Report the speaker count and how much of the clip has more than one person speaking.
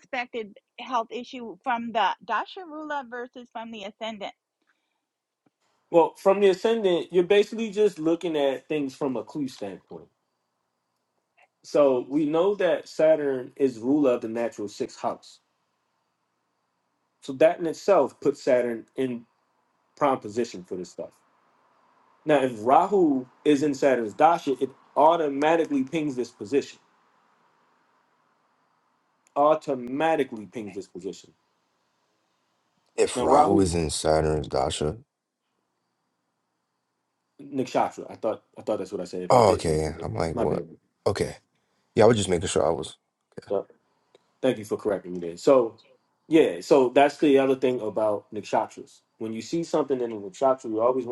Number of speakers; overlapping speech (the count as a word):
three, about 3%